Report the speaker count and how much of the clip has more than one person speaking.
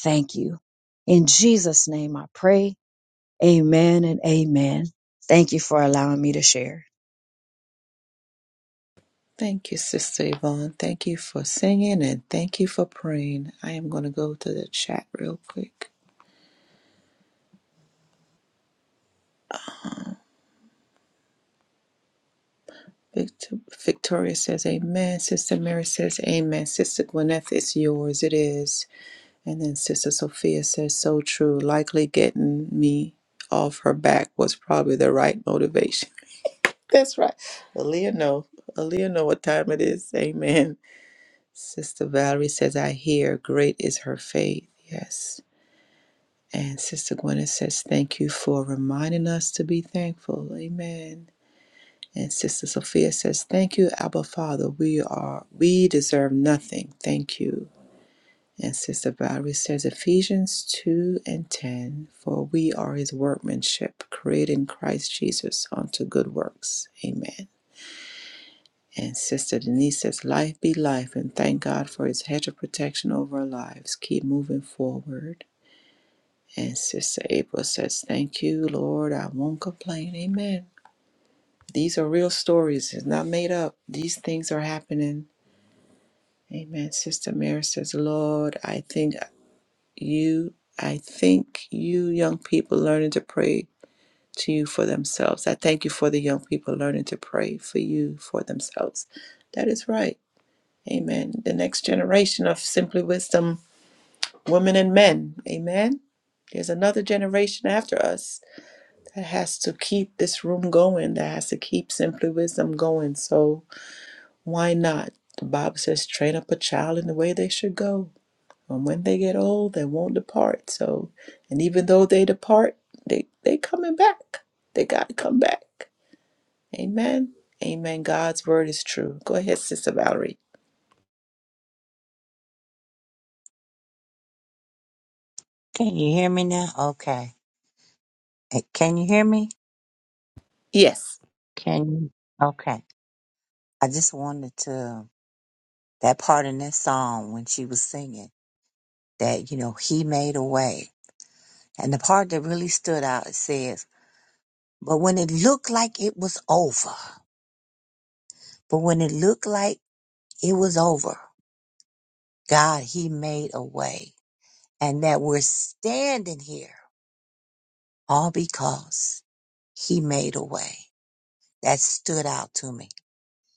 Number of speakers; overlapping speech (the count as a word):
three, no overlap